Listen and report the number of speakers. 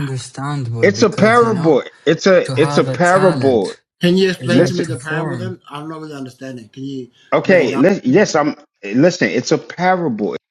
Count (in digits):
3